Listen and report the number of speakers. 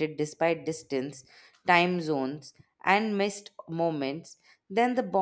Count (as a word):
one